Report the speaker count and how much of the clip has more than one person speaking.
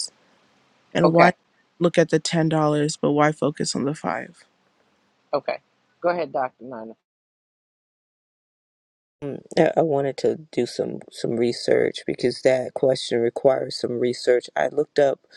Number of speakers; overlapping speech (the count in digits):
3, about 2%